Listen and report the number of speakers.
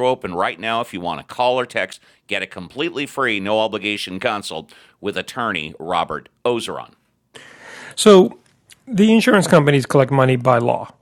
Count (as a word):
two